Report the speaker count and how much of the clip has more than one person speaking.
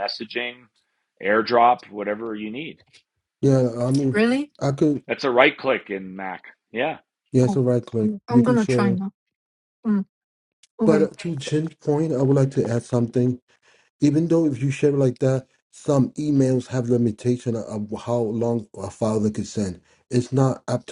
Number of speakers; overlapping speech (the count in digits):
3, about 7%